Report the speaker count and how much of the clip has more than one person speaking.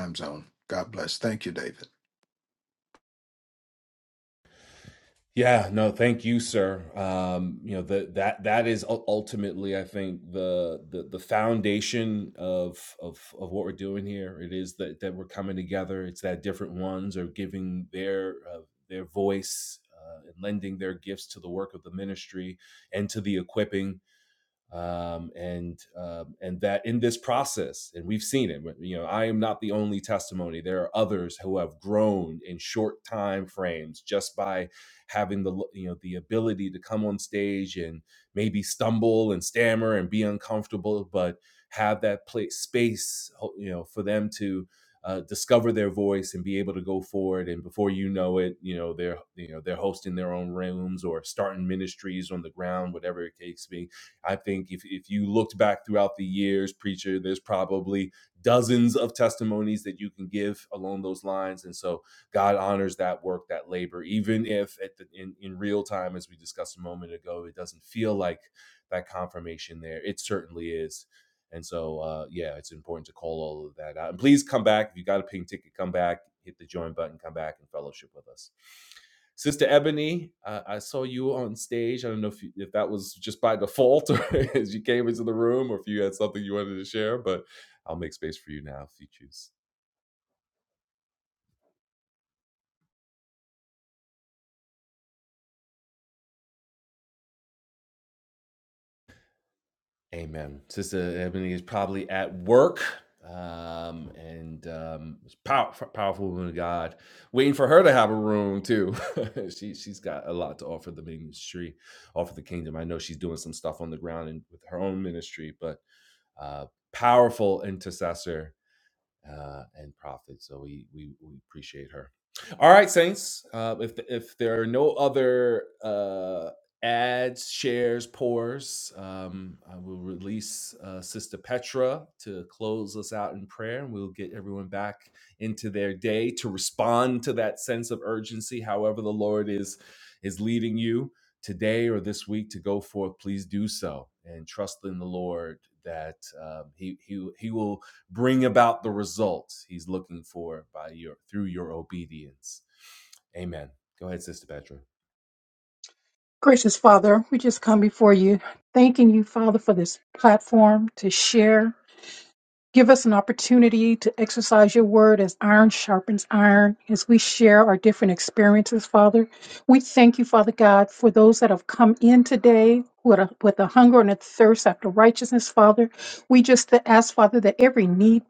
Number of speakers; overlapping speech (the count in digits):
3, no overlap